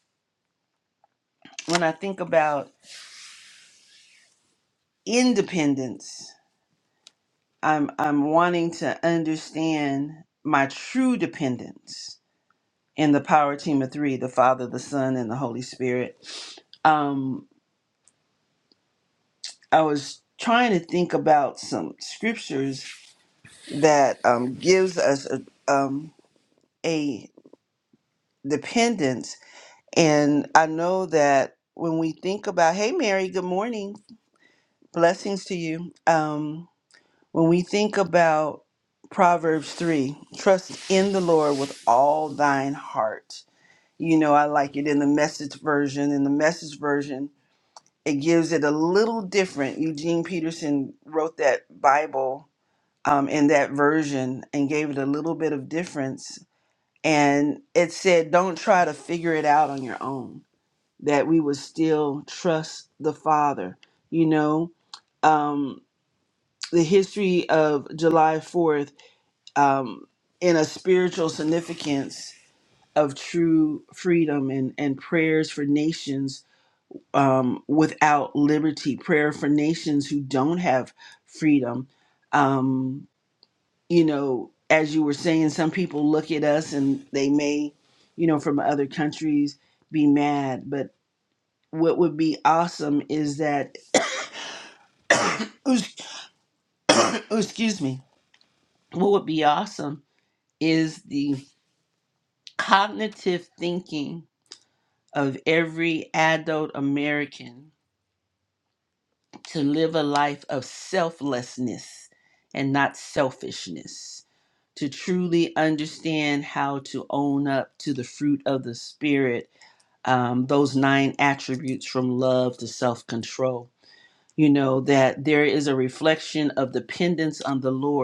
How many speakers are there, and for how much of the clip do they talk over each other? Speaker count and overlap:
one, no overlap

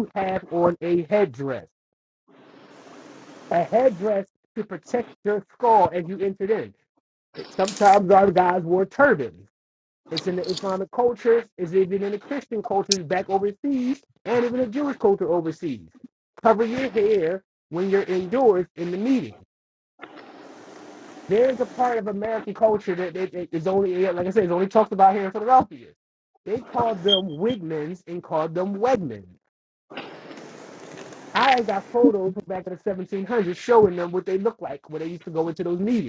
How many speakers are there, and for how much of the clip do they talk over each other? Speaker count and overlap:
one, no overlap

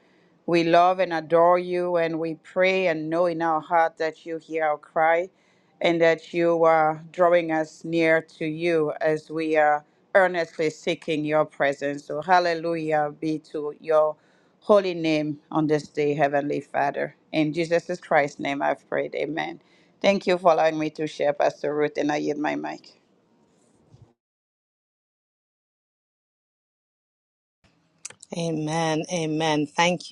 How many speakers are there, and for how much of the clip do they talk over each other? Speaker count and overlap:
two, no overlap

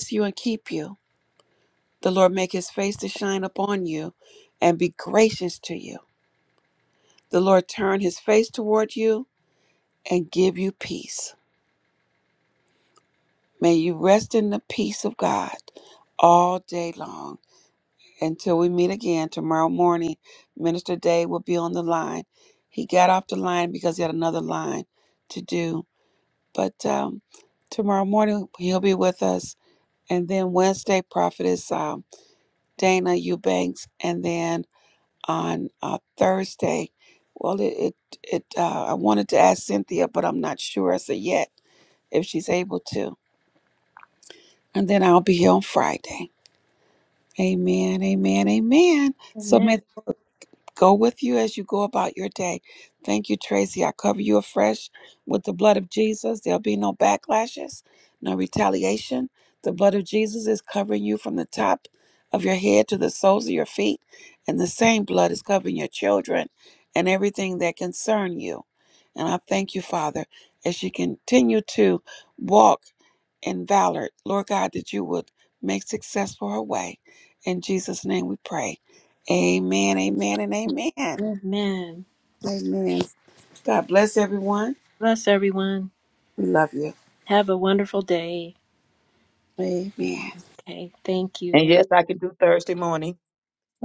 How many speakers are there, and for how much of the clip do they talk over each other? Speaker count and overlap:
three, under 1%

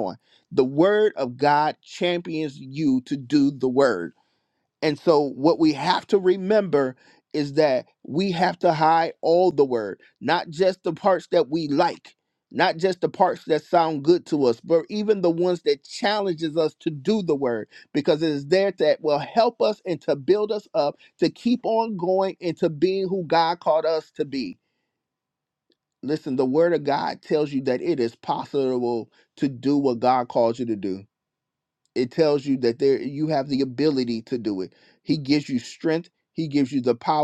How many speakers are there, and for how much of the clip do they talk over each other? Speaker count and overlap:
one, no overlap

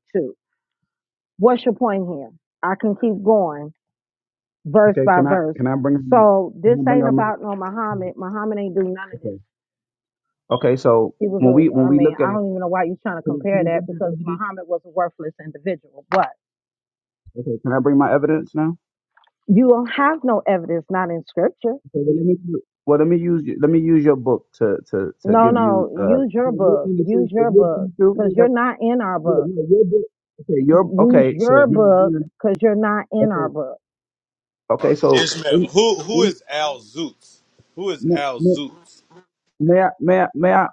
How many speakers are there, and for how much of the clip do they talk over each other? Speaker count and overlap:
three, about 22%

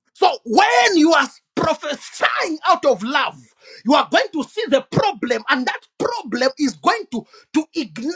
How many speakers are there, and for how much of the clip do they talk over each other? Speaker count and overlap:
one, no overlap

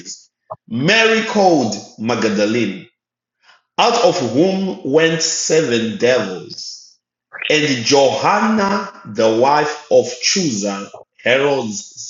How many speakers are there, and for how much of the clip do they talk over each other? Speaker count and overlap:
one, no overlap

